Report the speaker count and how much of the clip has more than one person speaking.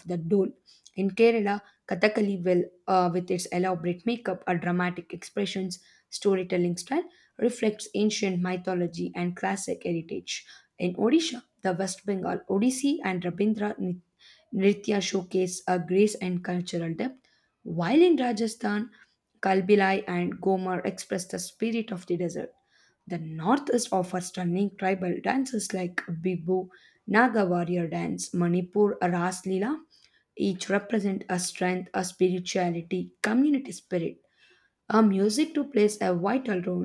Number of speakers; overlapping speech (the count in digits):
1, no overlap